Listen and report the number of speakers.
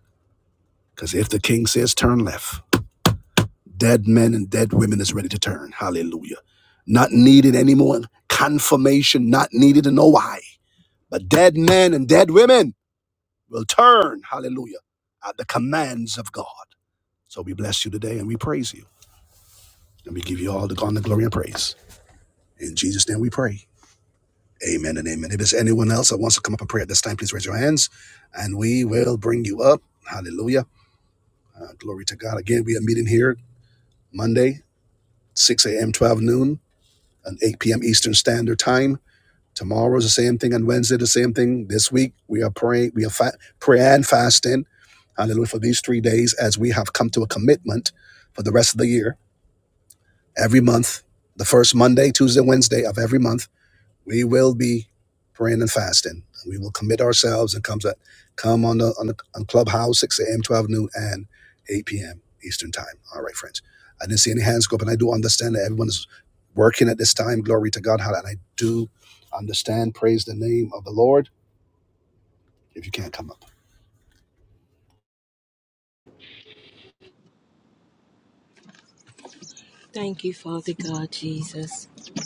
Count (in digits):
2